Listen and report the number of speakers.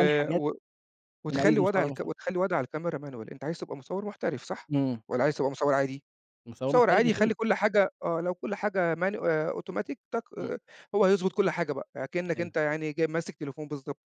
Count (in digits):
2